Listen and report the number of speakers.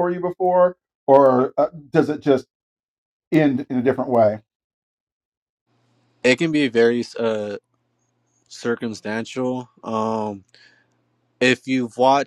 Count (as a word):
two